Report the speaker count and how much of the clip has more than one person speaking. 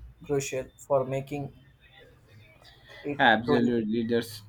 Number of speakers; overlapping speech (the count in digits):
2, about 12%